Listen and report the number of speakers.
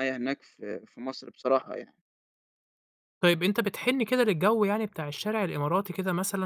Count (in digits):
2